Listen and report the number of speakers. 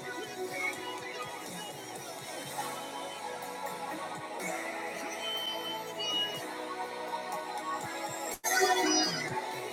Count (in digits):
0